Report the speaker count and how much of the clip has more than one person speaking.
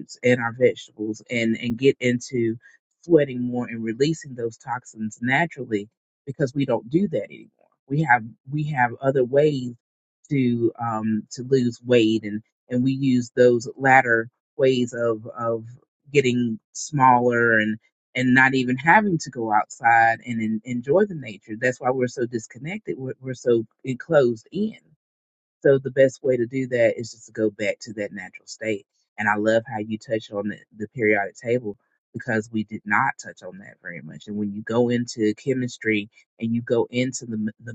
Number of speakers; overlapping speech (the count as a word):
one, no overlap